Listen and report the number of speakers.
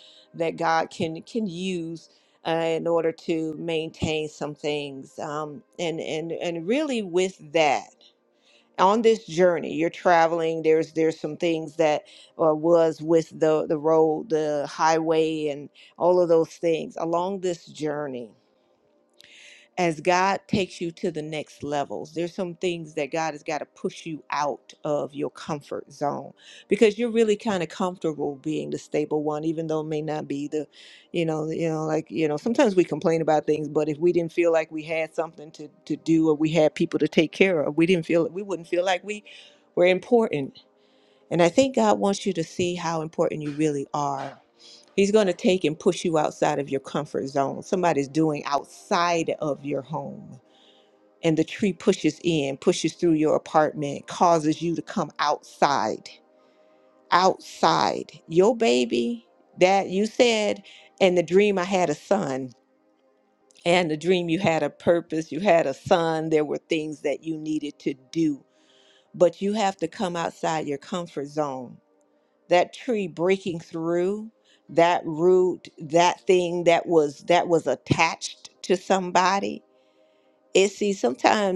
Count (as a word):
one